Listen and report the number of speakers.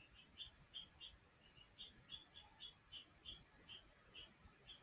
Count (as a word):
zero